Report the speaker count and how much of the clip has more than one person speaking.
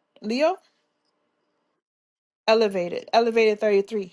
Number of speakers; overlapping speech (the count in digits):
1, no overlap